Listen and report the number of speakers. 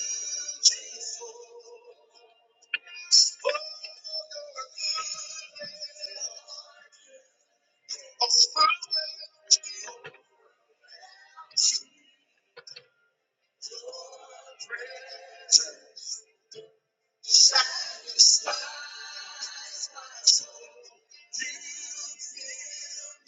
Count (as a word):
zero